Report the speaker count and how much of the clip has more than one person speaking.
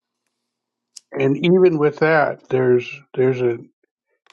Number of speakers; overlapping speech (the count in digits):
1, no overlap